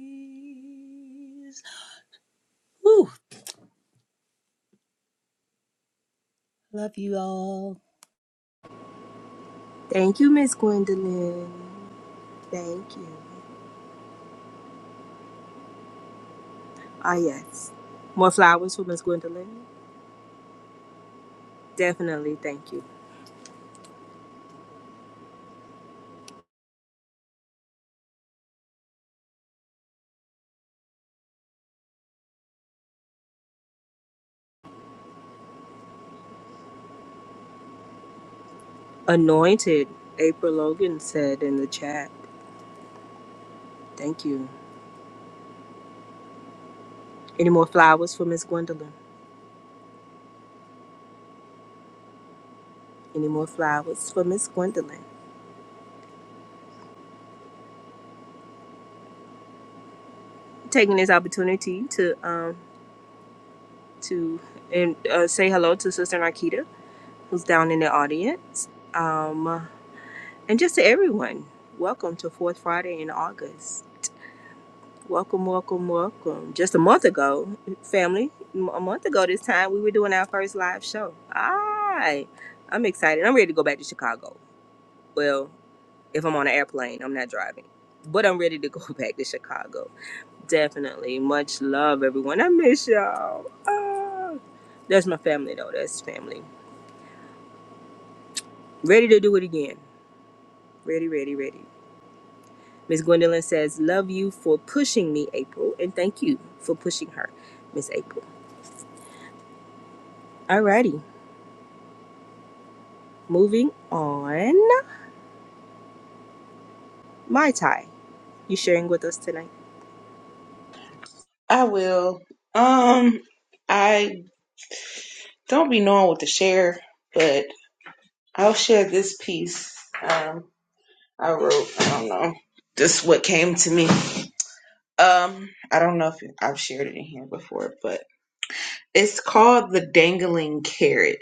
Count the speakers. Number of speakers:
three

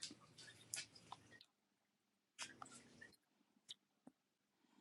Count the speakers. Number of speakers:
zero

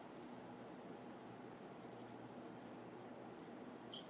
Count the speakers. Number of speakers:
zero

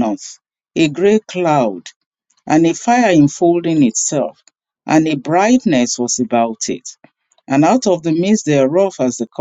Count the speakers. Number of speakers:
one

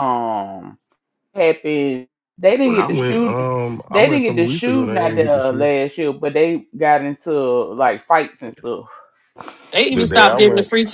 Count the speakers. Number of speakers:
three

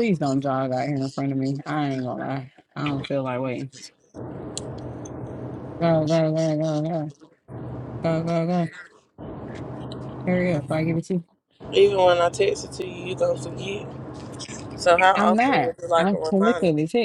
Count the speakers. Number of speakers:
two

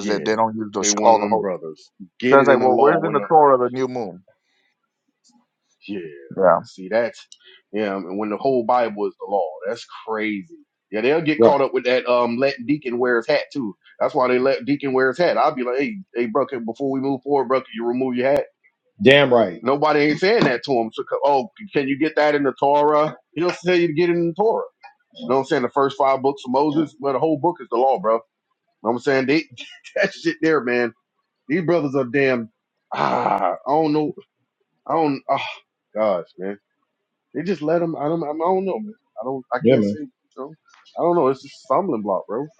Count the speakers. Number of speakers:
three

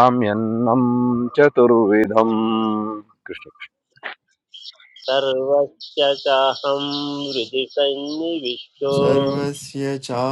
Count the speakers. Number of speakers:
three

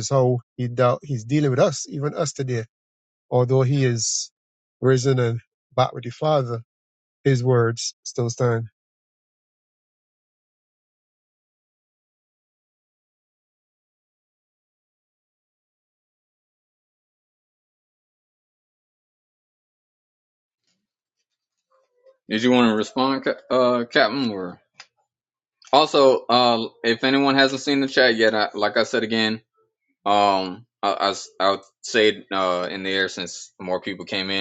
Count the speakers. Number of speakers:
two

